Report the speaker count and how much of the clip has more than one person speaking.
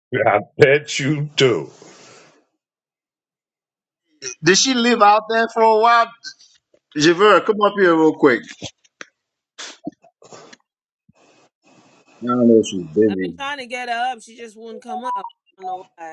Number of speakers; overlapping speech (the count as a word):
three, about 1%